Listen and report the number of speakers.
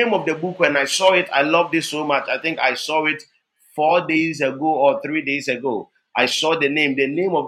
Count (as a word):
one